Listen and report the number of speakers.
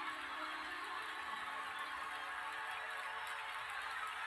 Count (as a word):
zero